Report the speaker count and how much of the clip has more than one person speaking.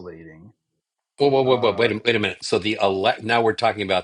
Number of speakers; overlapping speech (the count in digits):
2, about 13%